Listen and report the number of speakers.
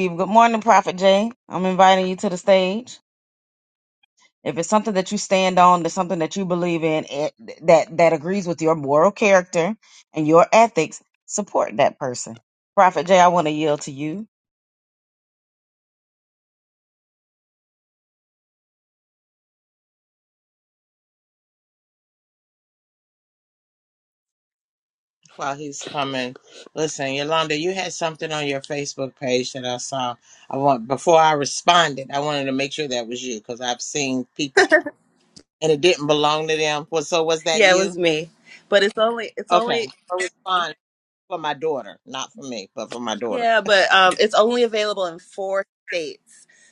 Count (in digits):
3